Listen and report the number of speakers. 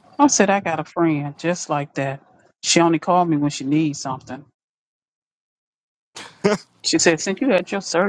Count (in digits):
1